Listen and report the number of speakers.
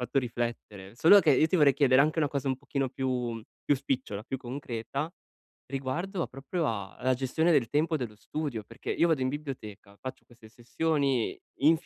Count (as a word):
one